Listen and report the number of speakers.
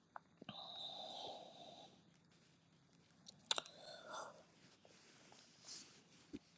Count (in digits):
0